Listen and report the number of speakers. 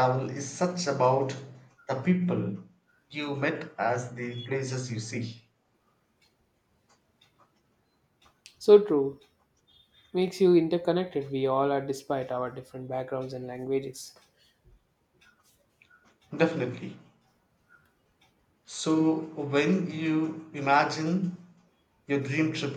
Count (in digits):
2